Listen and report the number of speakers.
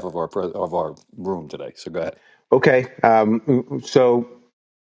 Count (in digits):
2